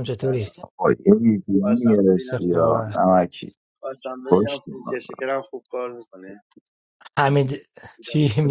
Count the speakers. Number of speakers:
three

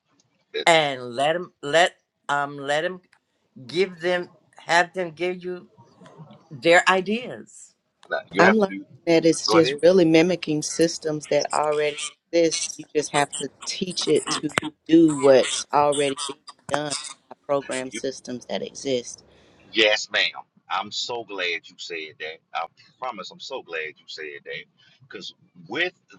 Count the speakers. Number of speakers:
three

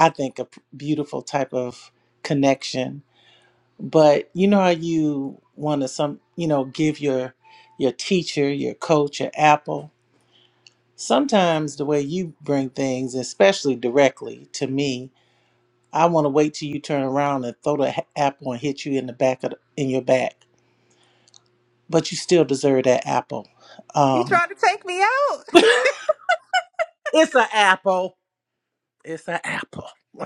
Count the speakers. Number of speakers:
two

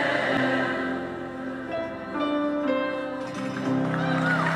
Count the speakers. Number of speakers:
zero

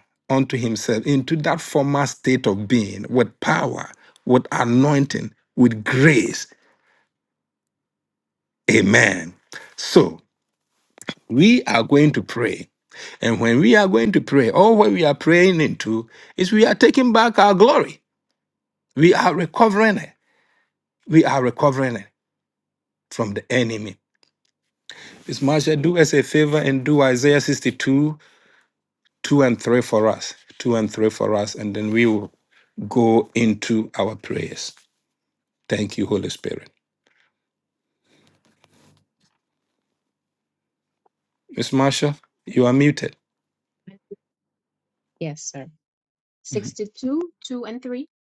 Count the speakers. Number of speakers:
two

